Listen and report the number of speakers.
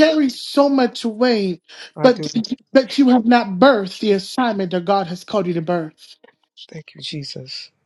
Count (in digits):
2